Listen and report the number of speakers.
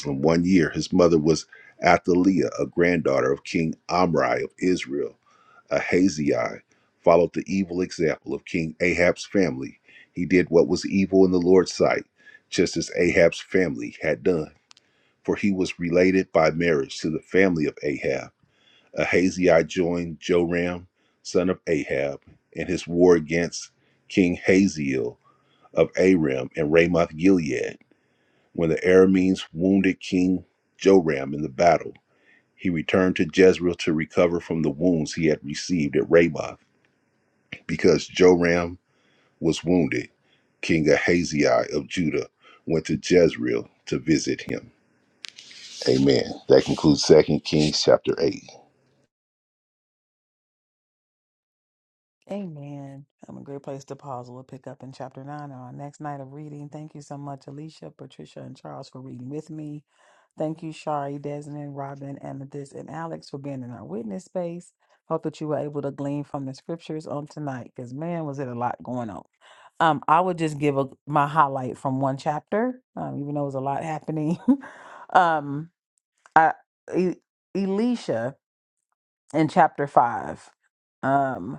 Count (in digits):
2